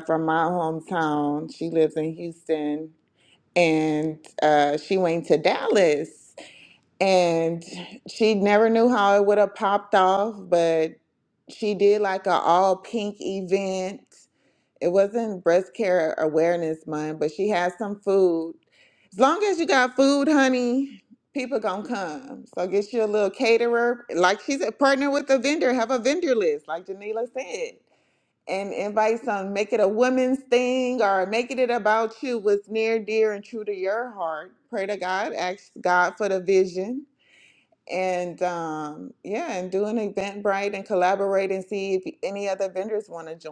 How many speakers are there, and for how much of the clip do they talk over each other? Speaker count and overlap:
one, no overlap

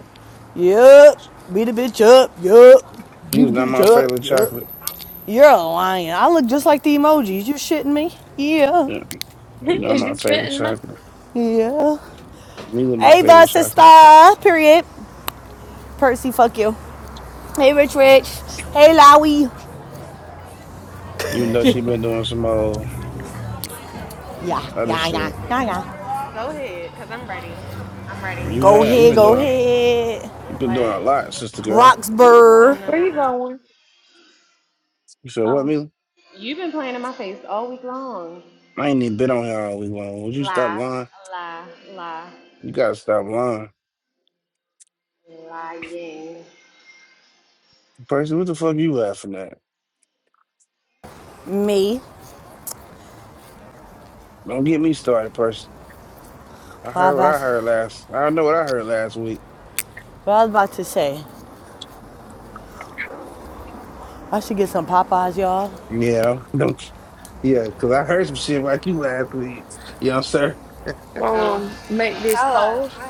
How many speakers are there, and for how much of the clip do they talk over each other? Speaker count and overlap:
four, about 11%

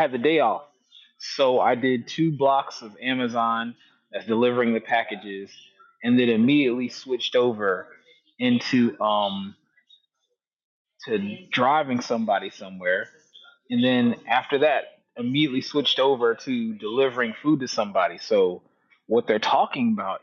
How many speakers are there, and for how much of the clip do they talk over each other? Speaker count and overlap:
one, no overlap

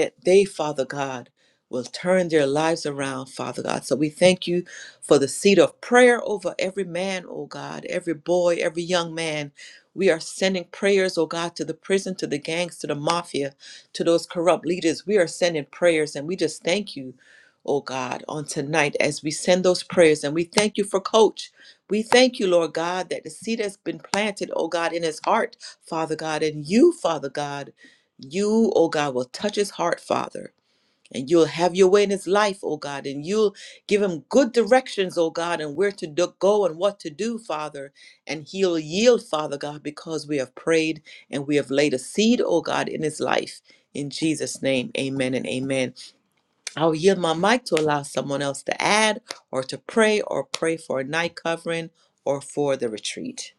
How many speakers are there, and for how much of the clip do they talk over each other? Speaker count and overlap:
one, no overlap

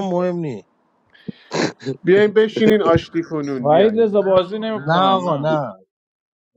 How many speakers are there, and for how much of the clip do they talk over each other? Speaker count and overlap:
three, about 17%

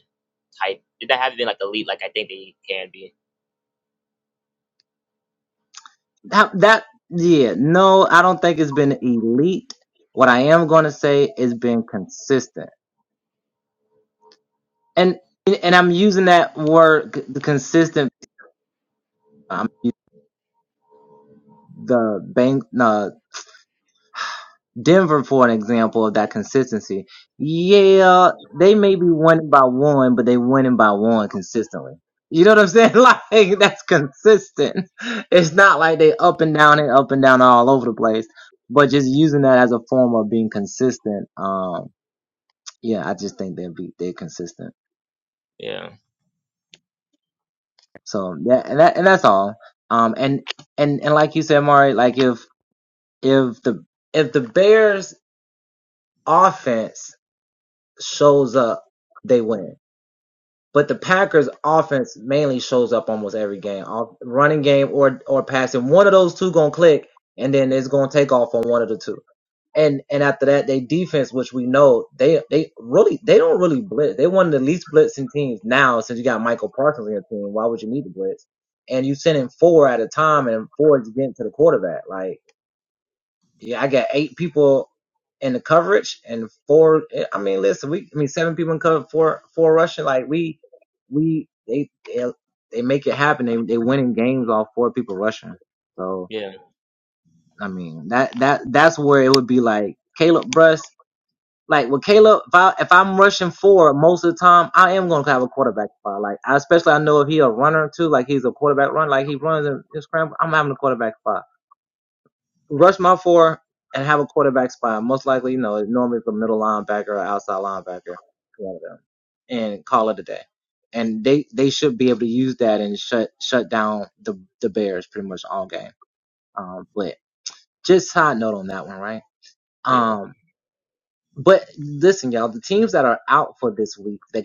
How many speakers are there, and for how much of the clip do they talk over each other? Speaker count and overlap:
two, under 1%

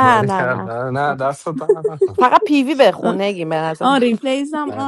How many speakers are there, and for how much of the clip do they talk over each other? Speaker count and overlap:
three, about 20%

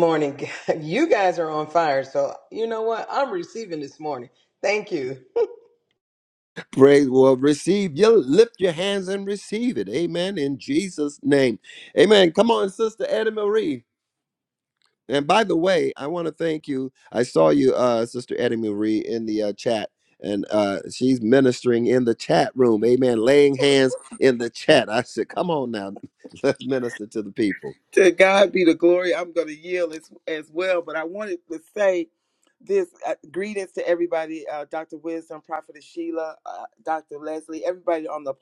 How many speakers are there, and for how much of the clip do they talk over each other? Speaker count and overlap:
three, no overlap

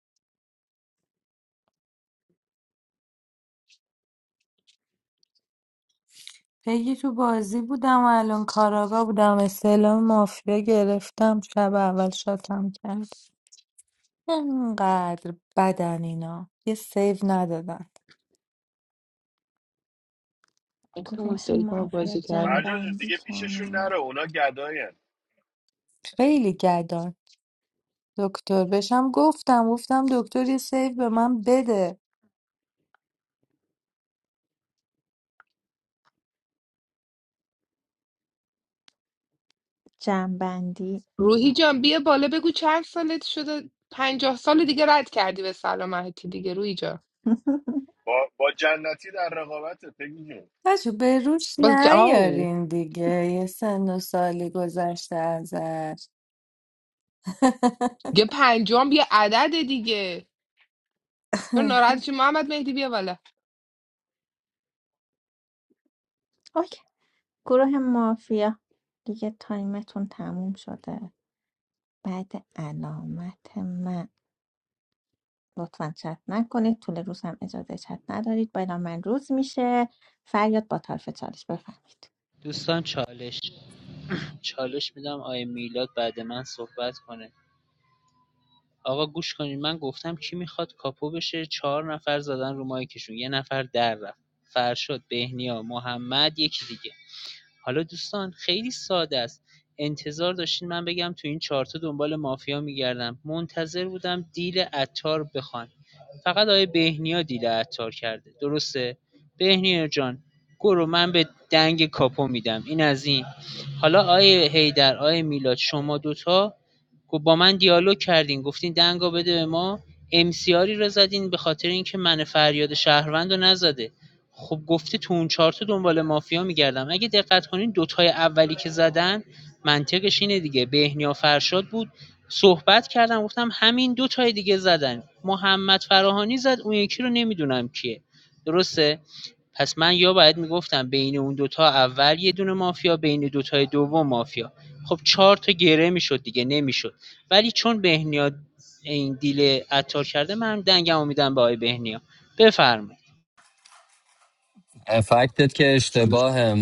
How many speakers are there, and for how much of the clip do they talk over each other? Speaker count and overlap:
six, about 2%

